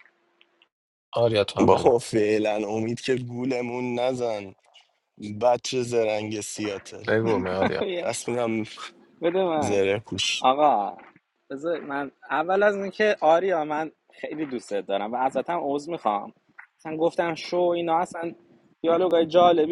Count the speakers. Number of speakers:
3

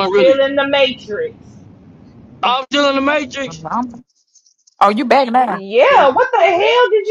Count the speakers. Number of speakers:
3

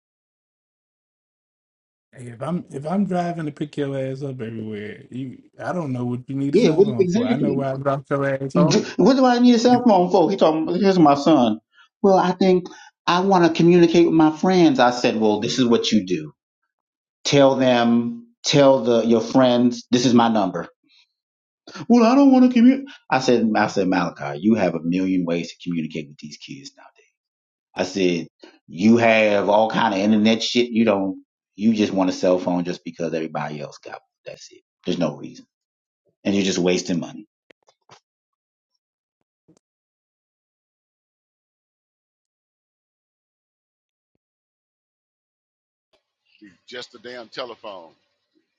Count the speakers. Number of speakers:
3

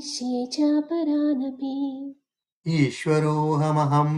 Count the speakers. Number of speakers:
2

